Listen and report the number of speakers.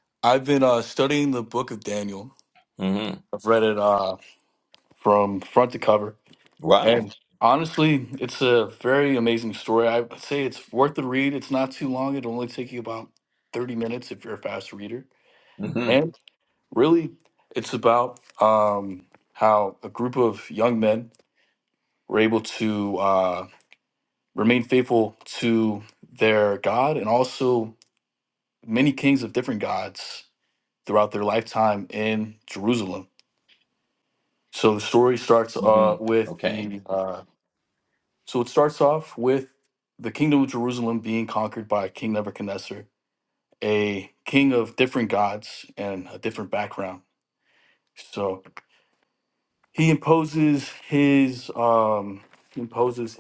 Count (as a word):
two